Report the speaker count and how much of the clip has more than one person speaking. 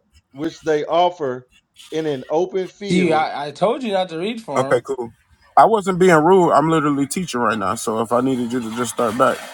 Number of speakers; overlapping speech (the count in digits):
3, about 6%